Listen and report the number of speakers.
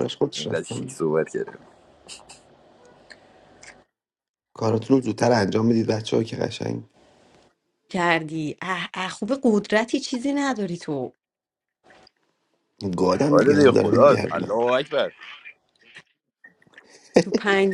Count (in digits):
3